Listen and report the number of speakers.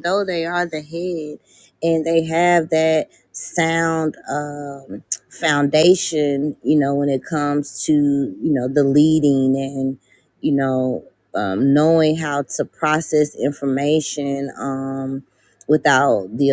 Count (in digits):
1